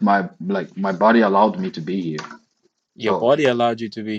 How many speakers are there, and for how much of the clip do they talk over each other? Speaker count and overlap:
two, about 5%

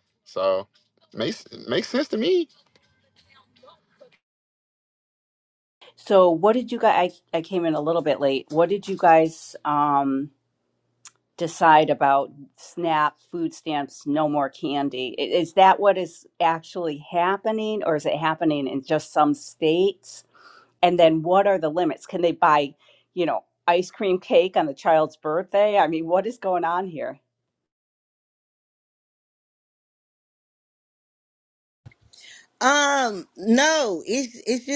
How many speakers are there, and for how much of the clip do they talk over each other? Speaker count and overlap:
three, no overlap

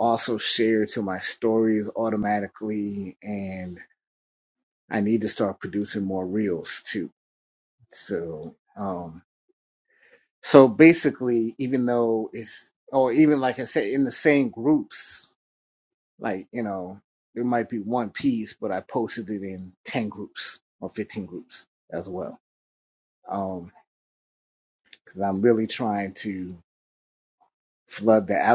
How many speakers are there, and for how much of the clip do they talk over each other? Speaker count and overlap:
one, no overlap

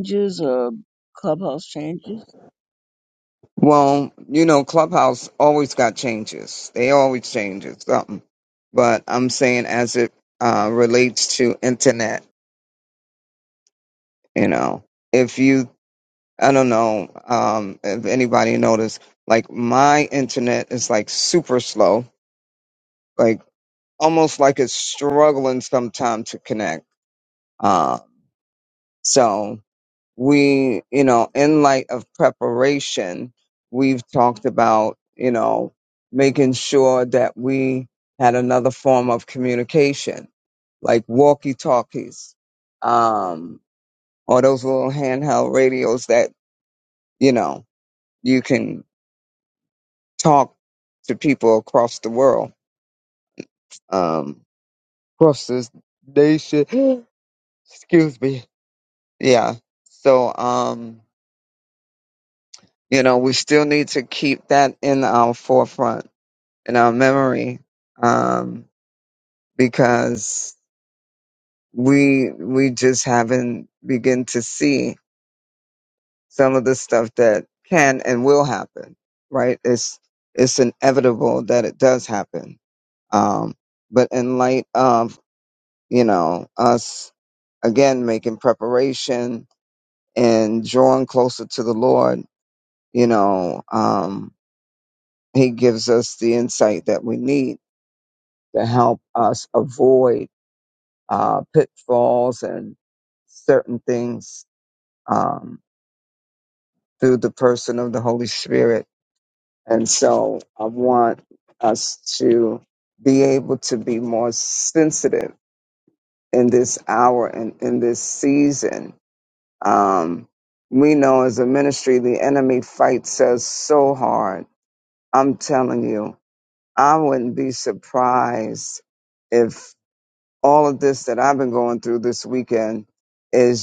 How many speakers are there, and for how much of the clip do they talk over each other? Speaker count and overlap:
two, no overlap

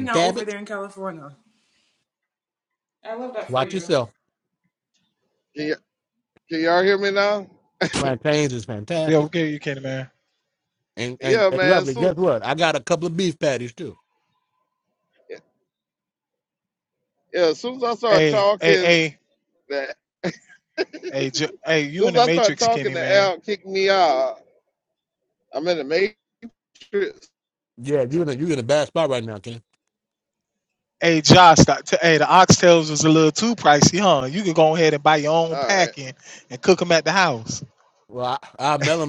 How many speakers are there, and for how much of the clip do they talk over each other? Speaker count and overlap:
four, about 12%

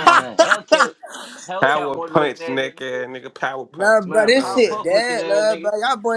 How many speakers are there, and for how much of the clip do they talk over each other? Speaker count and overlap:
three, about 52%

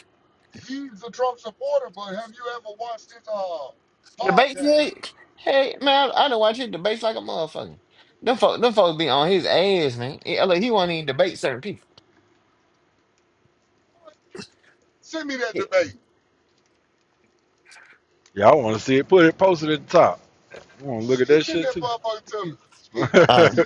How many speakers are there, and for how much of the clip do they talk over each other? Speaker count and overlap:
three, about 7%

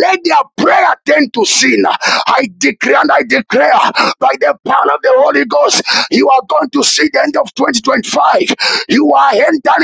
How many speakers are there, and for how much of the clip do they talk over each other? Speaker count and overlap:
one, no overlap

